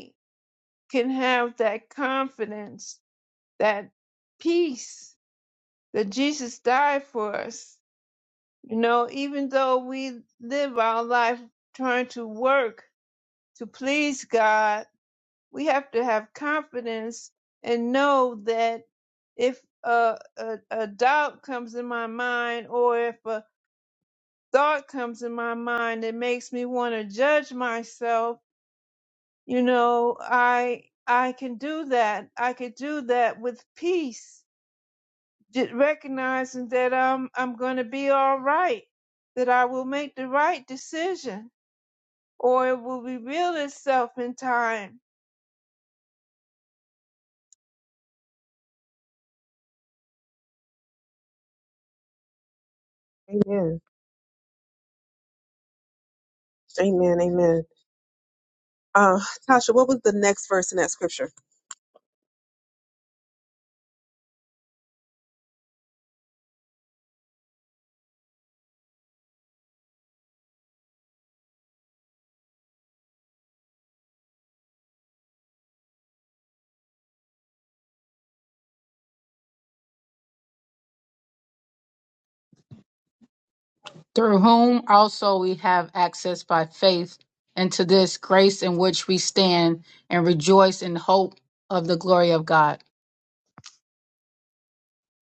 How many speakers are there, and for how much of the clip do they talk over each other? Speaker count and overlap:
three, no overlap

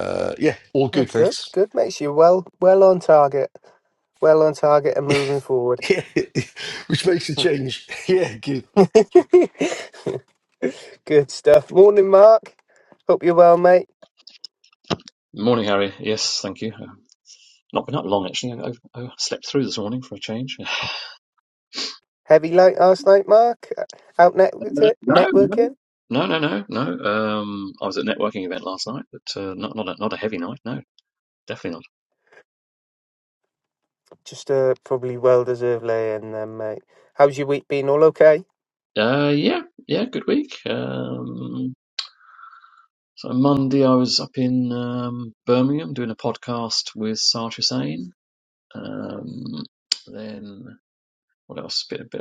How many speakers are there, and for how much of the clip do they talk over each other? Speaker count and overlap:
three, about 3%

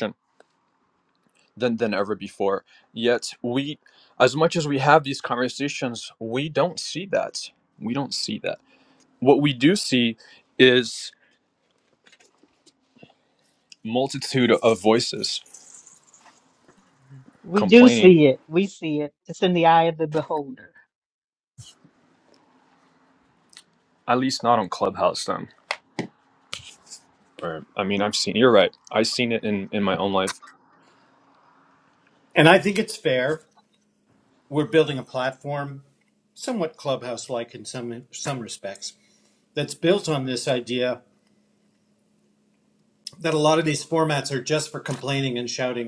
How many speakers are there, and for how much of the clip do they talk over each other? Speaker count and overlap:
three, about 1%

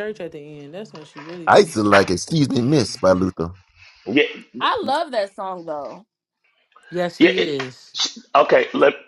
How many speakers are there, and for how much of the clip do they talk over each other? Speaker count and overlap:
four, about 10%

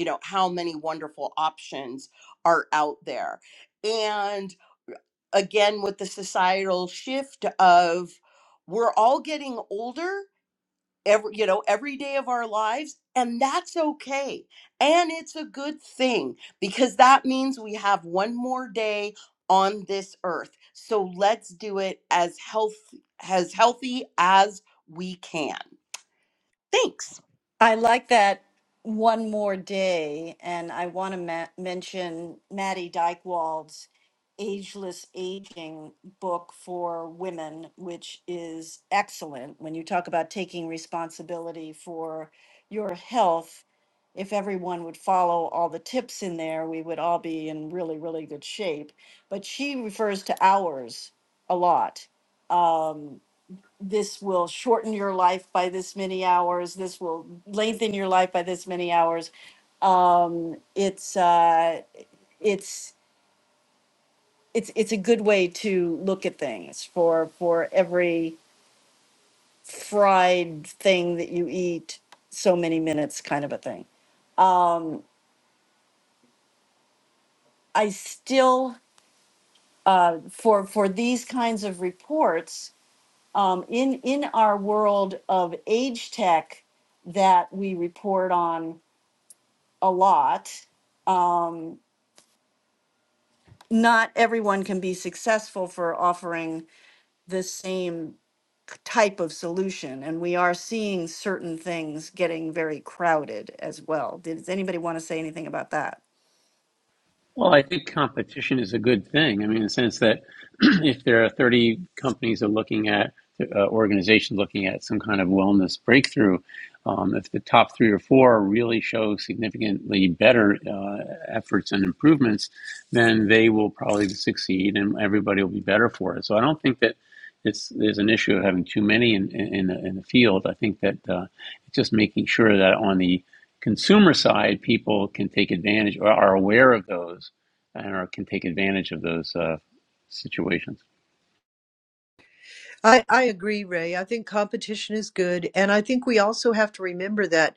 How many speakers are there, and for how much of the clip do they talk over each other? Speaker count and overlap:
four, no overlap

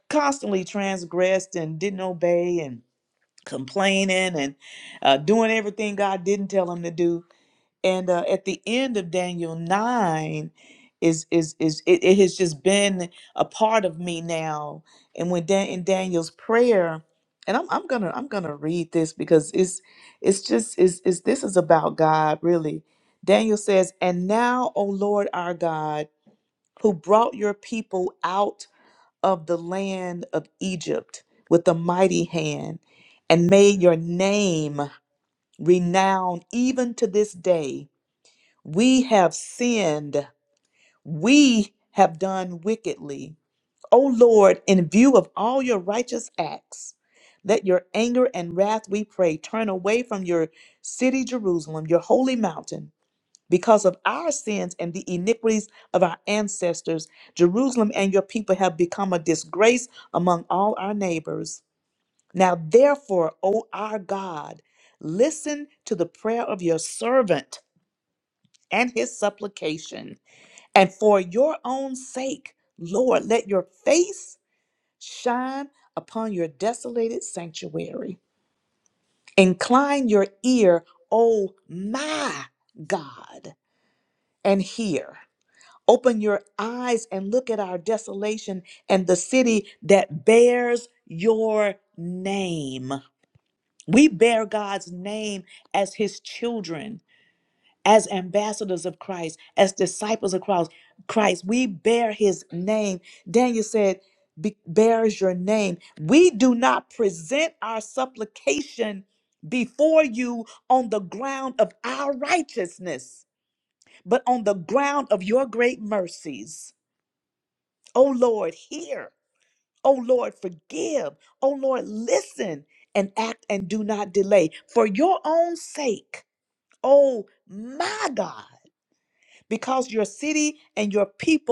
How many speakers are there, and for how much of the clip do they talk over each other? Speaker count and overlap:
one, no overlap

